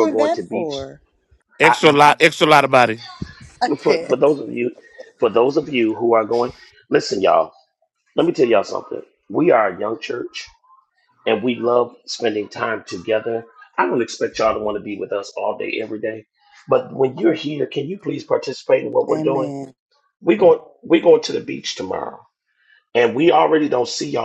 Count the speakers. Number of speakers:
three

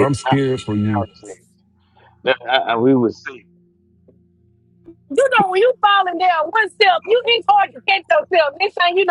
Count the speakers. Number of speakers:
three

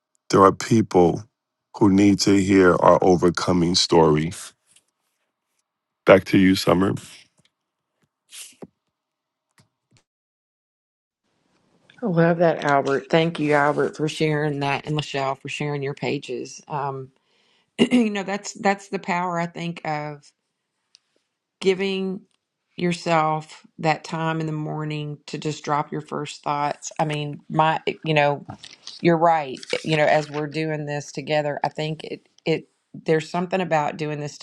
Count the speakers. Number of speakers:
two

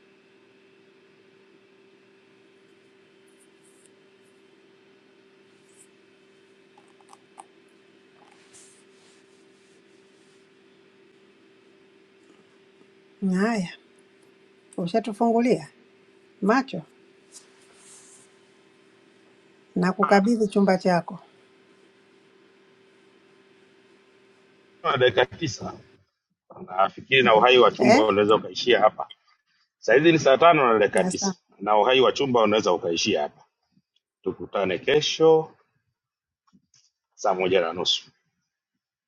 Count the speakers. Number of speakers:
two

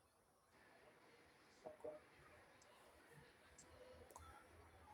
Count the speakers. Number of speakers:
zero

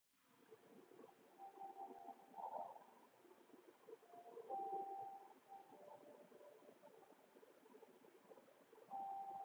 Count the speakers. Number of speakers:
zero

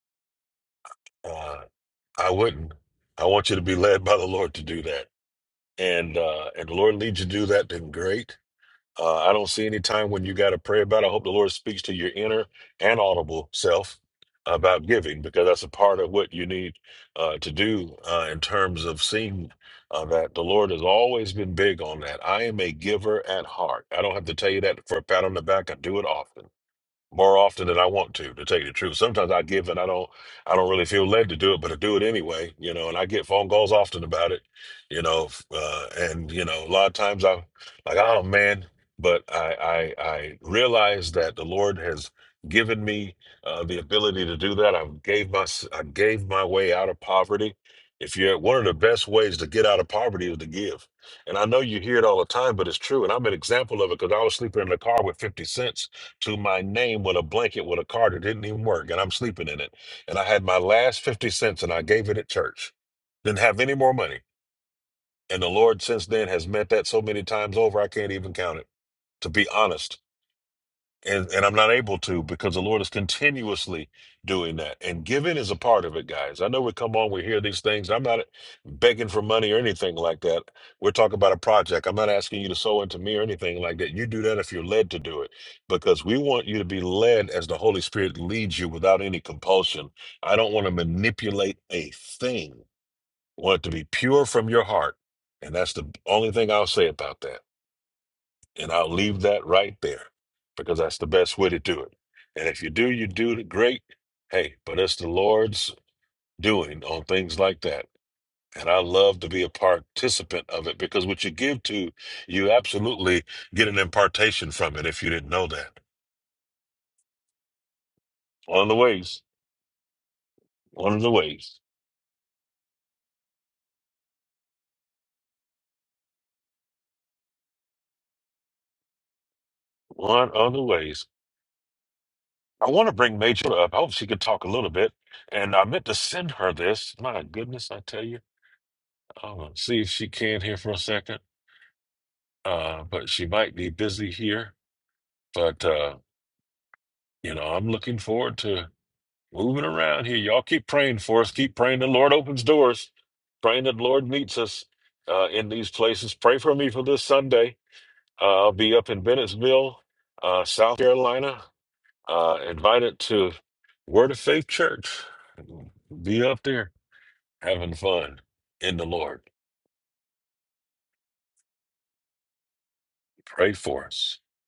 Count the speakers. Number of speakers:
one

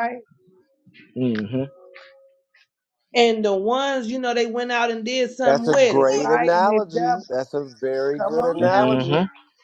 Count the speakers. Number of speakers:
three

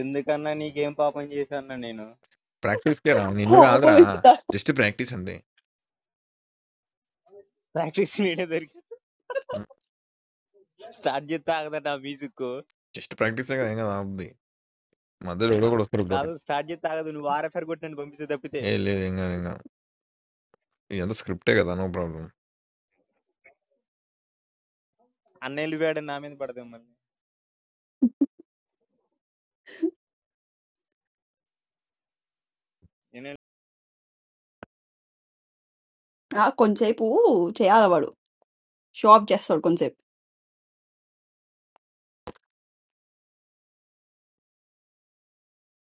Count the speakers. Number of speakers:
three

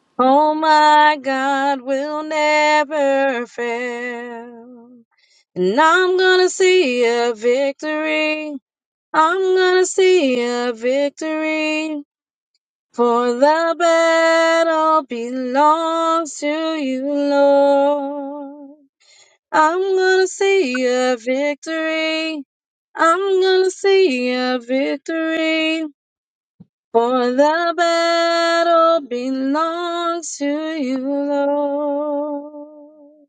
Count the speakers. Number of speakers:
one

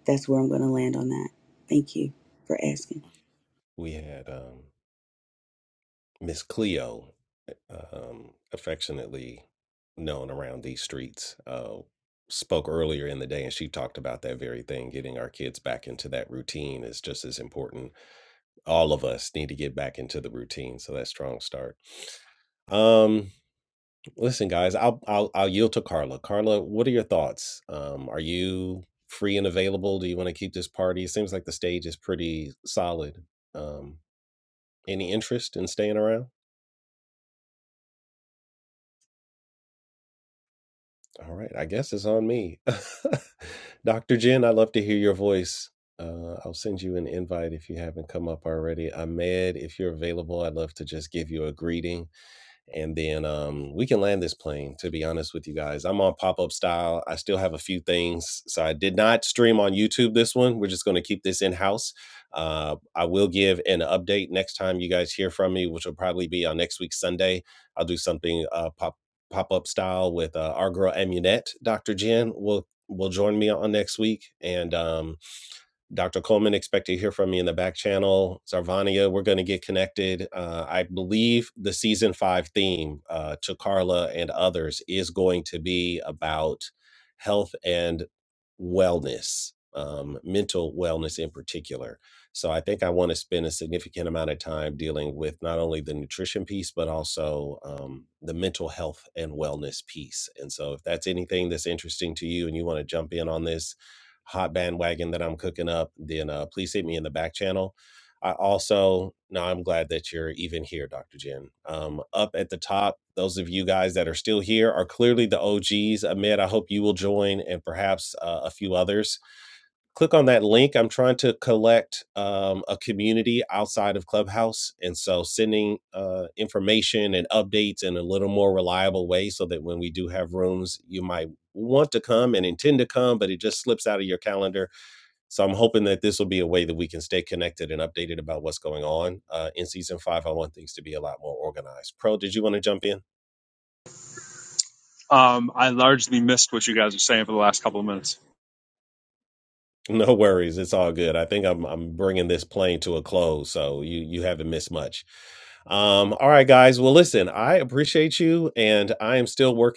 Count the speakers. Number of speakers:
three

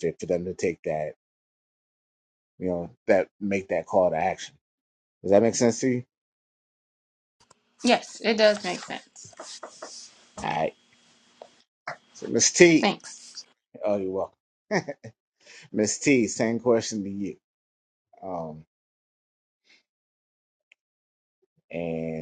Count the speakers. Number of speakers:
two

